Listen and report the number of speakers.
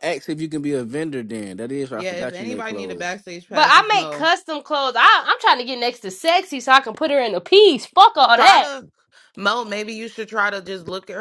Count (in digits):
3